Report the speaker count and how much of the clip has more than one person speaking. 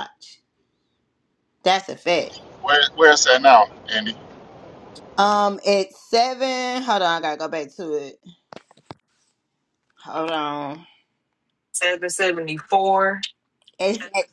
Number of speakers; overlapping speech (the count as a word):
three, no overlap